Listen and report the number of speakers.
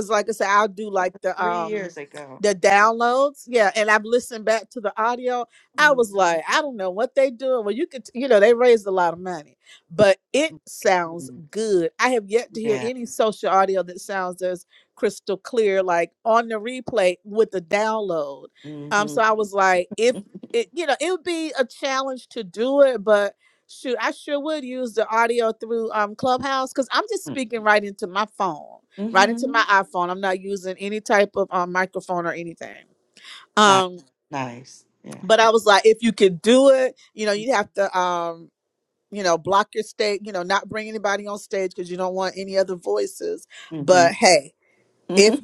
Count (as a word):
two